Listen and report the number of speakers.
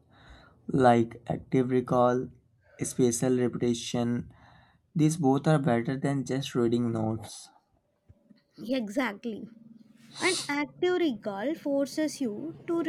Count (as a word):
two